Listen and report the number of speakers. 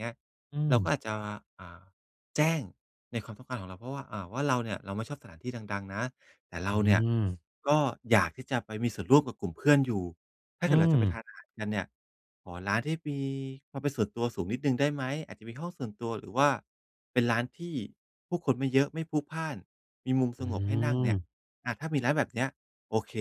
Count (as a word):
two